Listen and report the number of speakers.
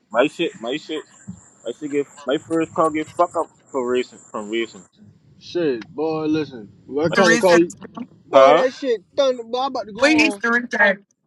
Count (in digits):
3